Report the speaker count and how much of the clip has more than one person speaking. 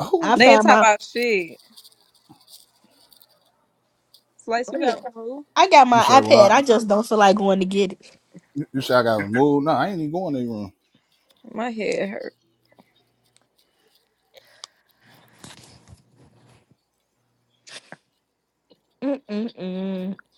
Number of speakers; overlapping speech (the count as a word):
three, about 8%